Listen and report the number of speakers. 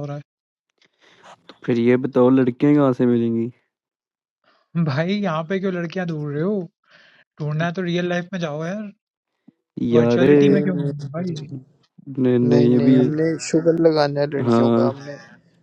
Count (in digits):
3